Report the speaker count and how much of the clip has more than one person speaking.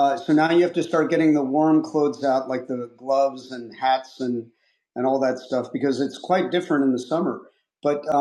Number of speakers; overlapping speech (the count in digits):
1, no overlap